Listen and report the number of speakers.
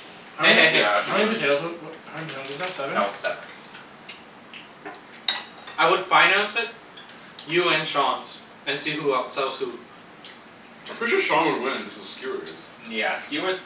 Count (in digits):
4